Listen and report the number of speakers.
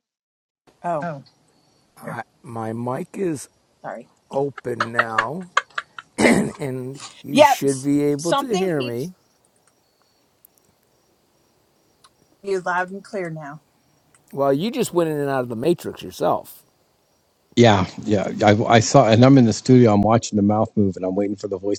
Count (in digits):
3